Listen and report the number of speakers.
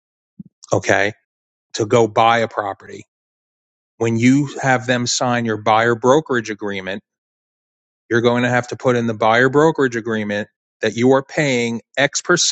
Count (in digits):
1